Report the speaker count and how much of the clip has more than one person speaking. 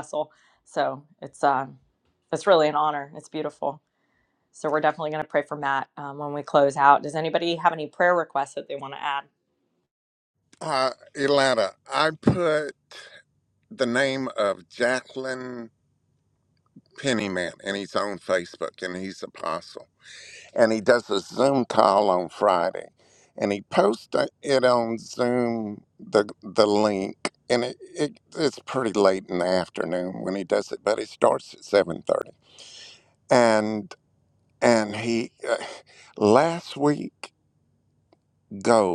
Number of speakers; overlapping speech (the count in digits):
2, no overlap